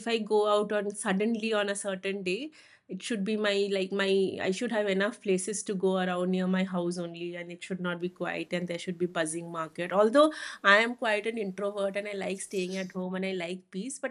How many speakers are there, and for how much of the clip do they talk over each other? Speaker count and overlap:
1, no overlap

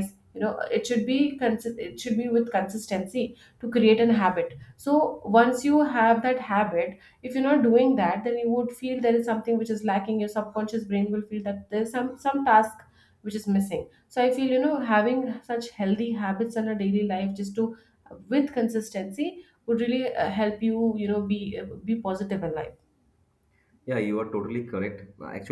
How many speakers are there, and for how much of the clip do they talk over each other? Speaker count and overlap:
2, no overlap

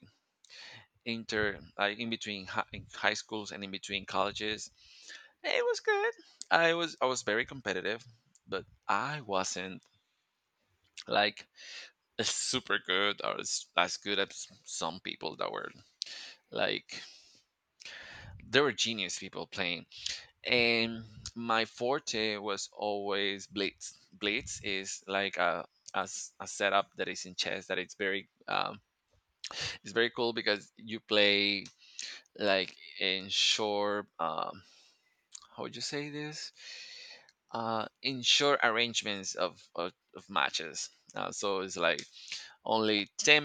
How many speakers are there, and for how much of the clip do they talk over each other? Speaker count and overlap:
1, no overlap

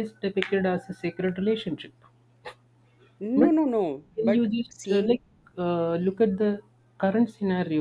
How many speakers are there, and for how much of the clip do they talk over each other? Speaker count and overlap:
2, about 9%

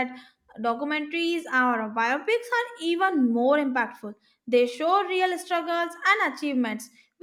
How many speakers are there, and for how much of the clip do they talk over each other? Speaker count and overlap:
1, no overlap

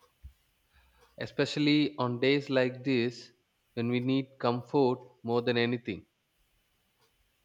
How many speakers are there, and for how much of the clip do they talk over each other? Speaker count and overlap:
1, no overlap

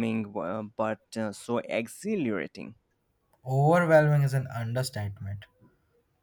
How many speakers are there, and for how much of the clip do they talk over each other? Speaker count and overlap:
2, no overlap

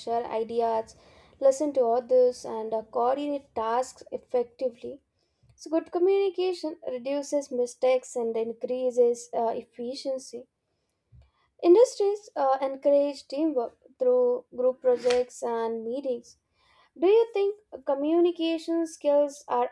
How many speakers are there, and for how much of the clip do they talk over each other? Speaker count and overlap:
1, no overlap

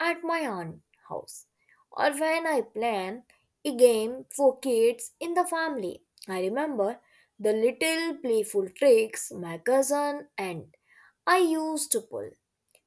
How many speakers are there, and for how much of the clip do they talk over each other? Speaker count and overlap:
1, no overlap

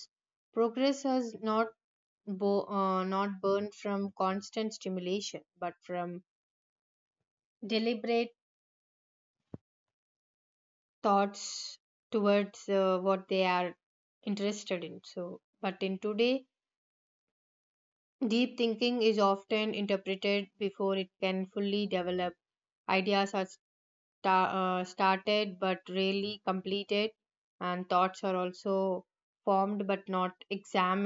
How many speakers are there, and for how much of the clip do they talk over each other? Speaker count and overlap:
1, no overlap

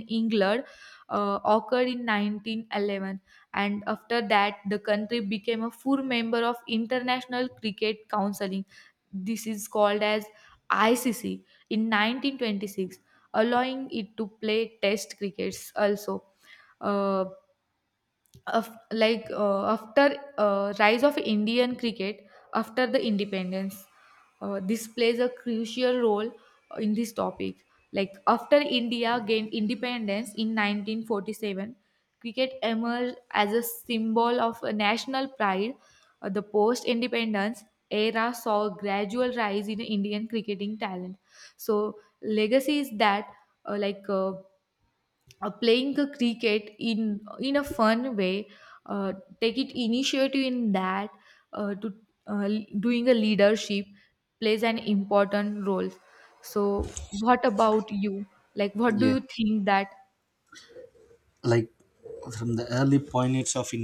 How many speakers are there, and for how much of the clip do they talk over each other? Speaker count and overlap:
2, under 1%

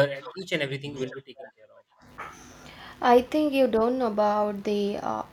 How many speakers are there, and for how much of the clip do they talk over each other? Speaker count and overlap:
2, no overlap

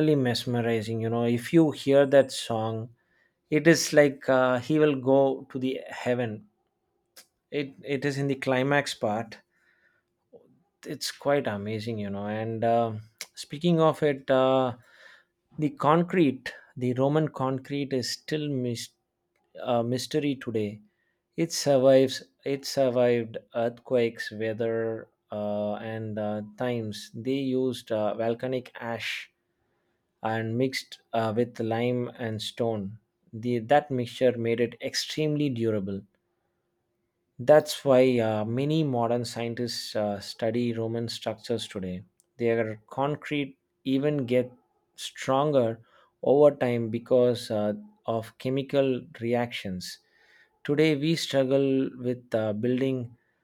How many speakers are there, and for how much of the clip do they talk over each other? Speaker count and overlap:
1, no overlap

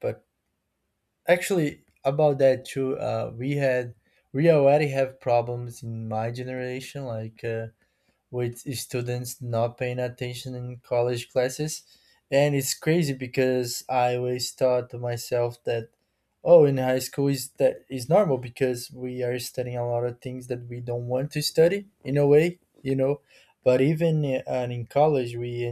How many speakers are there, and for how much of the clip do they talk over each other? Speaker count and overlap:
1, no overlap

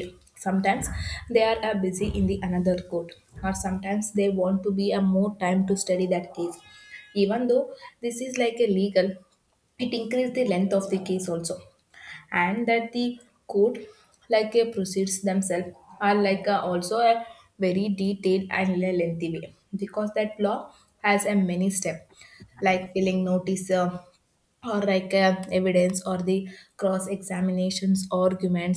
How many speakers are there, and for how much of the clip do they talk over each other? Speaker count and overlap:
1, no overlap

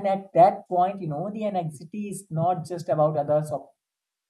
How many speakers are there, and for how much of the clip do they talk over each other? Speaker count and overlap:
1, no overlap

